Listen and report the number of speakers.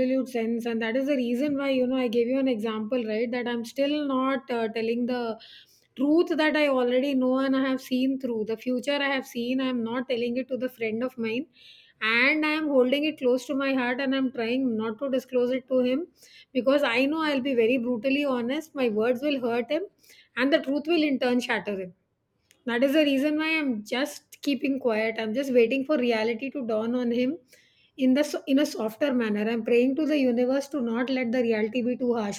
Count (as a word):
one